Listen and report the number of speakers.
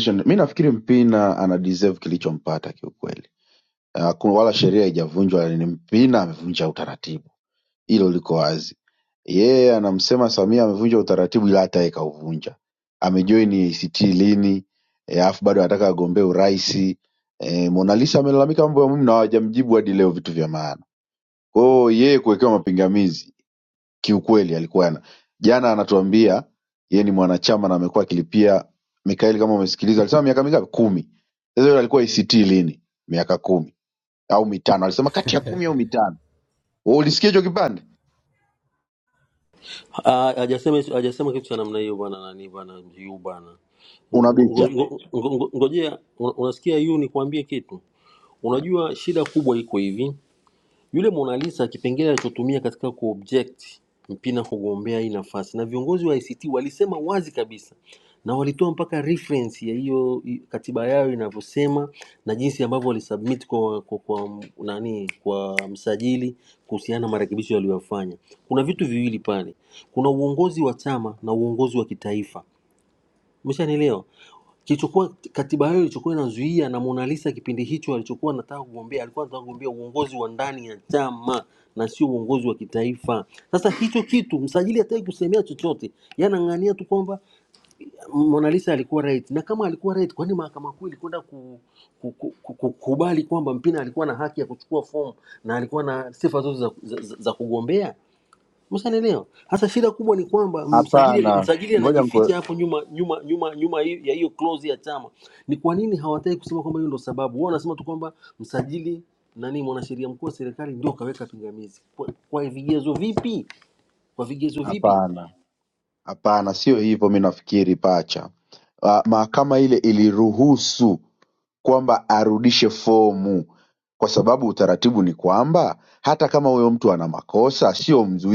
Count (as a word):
two